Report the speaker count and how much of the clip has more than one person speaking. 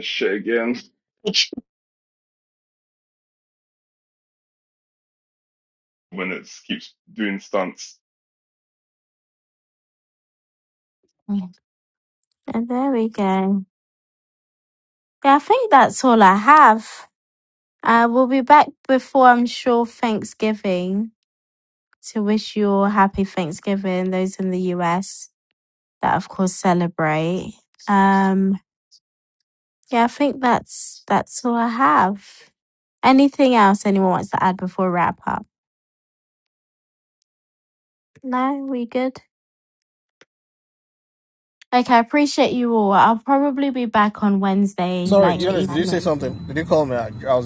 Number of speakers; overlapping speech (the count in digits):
3, about 2%